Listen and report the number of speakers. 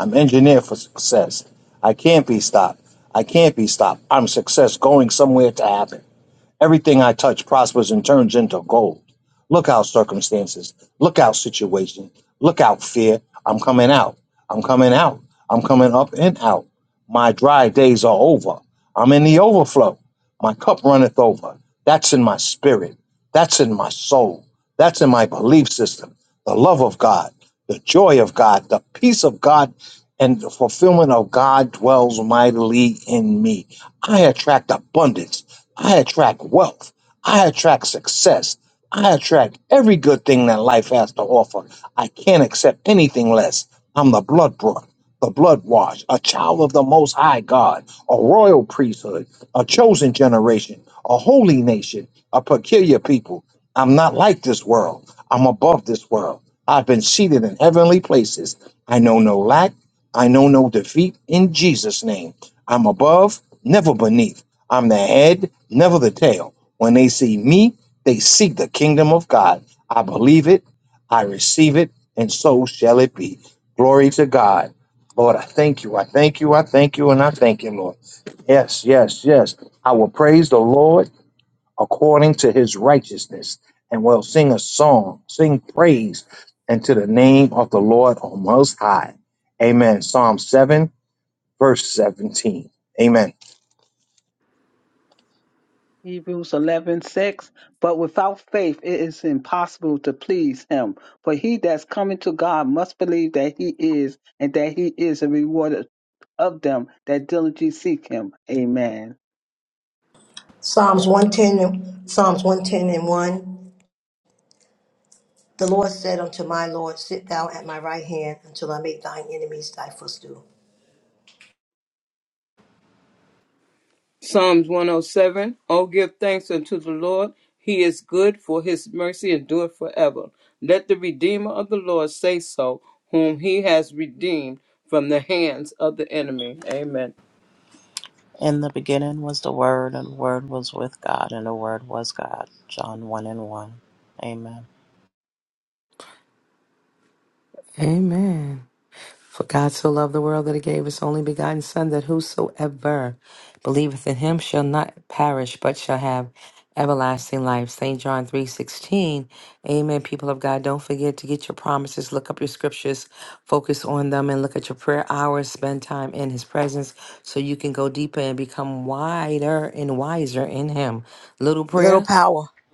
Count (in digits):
6